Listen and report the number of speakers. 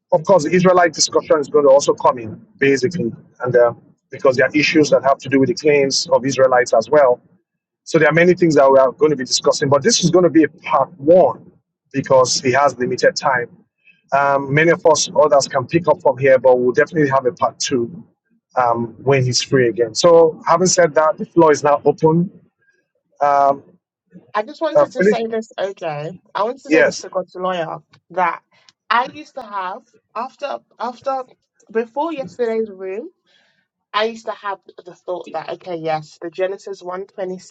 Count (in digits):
2